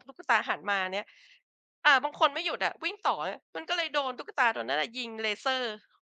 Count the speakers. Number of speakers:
1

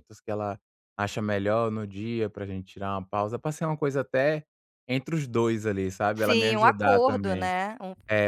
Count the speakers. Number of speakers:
2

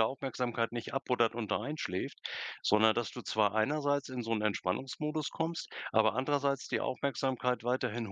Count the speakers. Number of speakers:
1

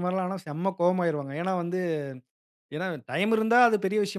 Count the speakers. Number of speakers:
1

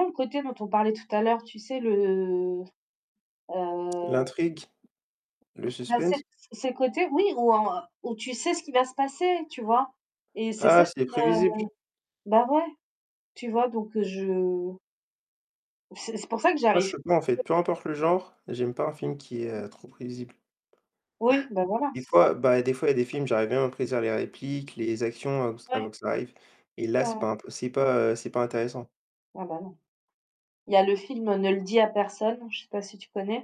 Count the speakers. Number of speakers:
2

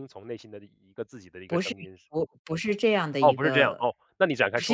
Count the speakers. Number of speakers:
2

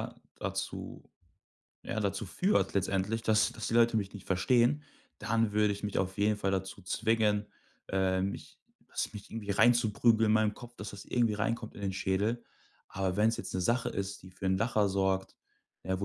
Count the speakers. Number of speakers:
1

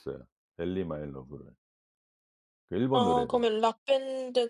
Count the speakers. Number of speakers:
2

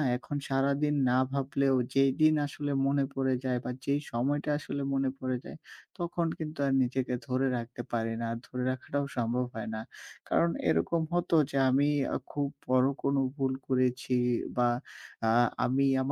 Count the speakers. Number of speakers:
1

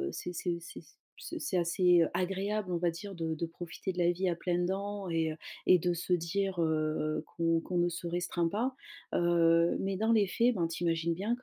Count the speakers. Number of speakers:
1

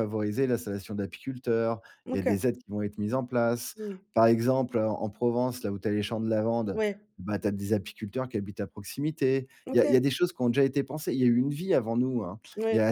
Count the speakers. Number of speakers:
2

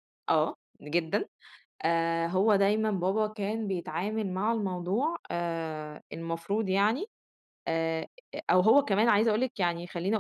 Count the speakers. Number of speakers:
1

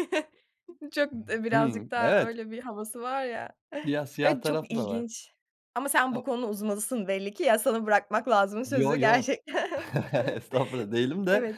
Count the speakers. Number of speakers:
2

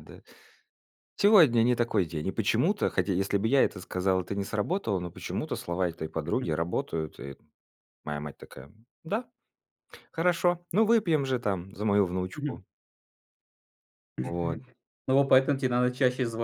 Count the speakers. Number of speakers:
2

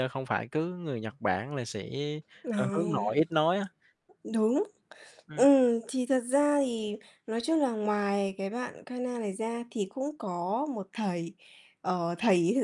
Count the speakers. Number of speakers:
2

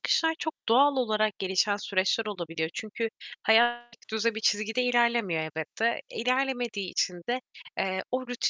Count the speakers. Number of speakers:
1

